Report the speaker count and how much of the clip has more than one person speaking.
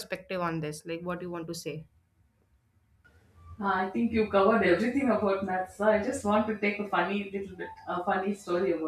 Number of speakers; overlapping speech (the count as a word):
two, no overlap